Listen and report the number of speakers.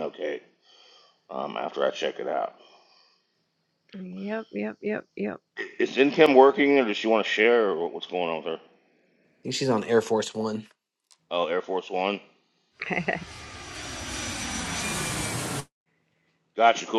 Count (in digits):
3